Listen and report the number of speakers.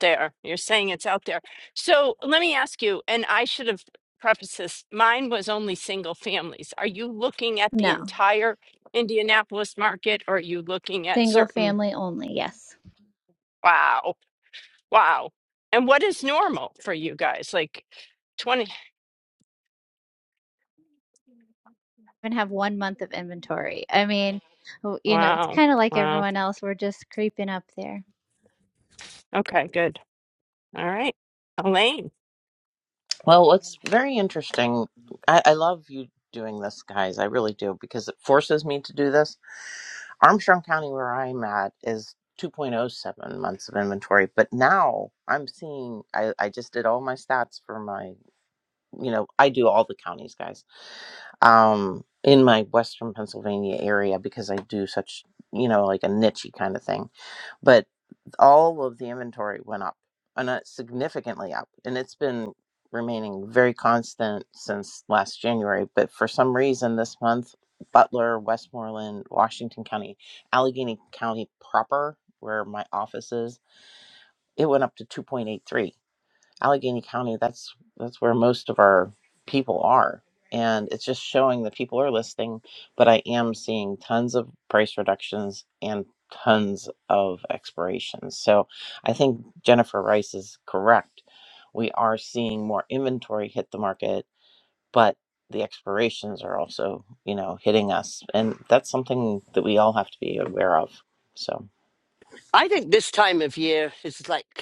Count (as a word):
four